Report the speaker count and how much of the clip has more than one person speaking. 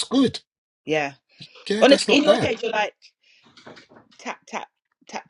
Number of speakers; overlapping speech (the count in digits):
2, about 13%